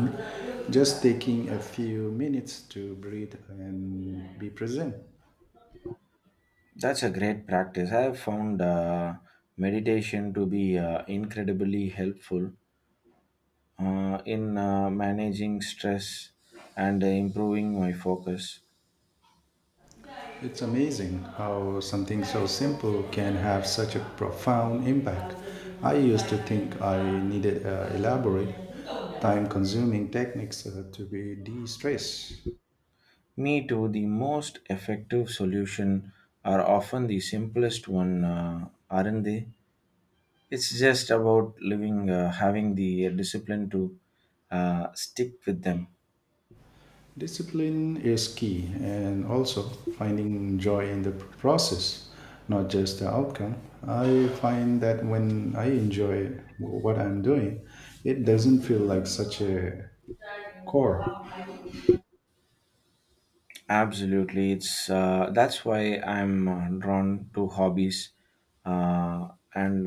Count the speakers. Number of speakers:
two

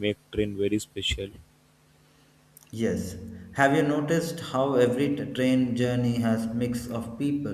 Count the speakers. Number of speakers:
two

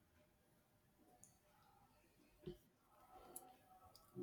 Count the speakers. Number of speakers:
zero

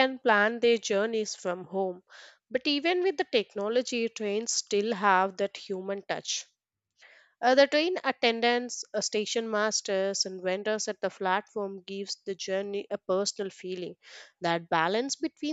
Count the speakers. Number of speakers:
one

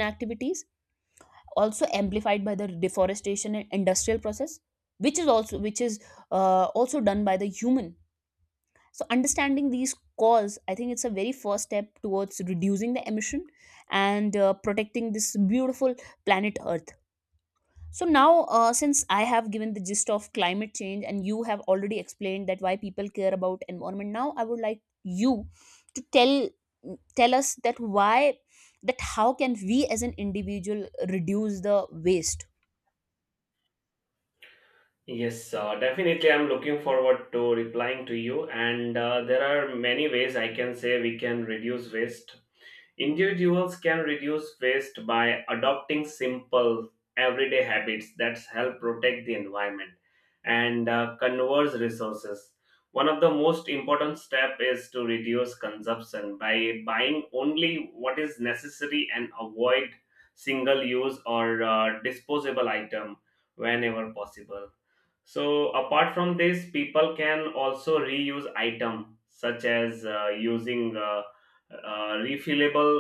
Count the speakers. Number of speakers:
two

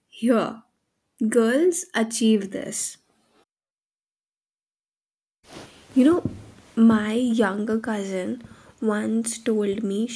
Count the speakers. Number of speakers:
one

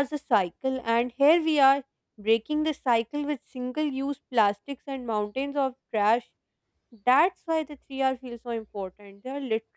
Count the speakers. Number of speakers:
one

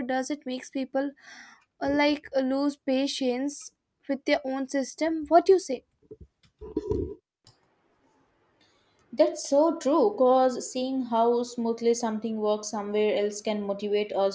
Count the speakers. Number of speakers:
two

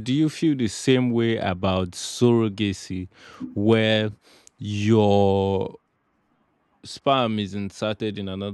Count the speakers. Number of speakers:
one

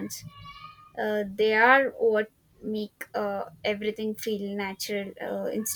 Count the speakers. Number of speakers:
one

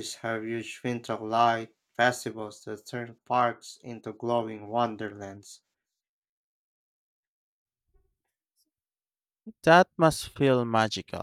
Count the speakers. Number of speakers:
two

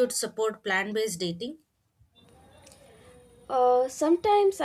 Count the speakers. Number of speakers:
two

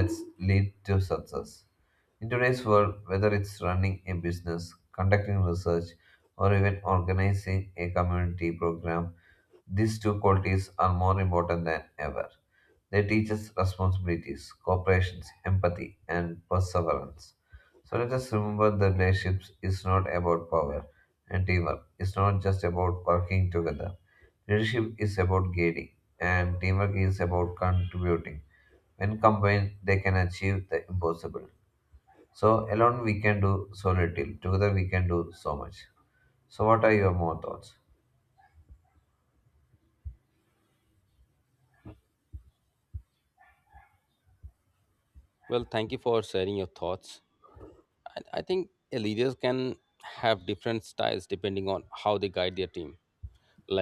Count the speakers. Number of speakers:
two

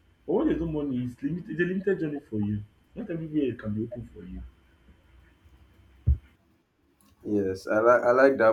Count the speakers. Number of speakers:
two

